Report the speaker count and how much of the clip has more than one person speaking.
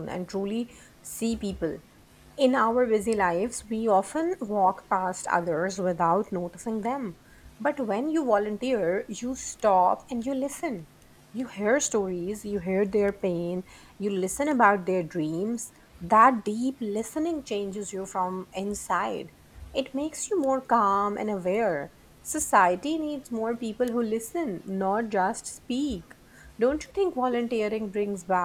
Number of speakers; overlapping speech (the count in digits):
1, no overlap